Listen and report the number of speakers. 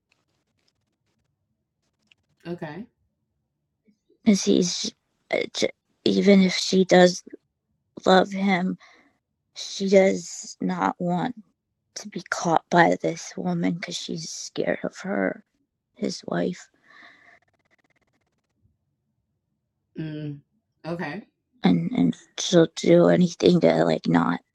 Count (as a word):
two